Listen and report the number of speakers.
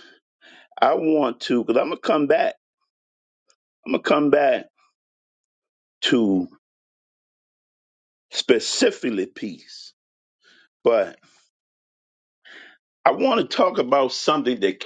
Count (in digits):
1